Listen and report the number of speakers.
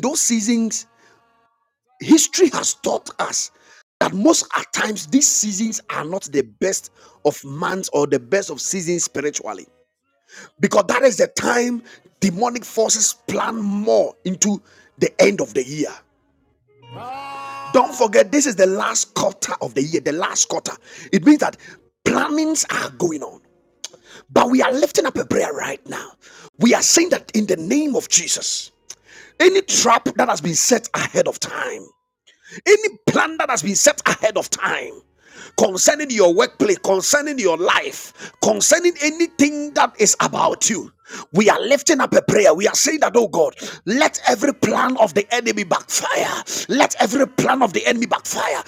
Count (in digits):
1